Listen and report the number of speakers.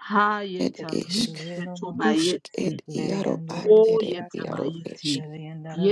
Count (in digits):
3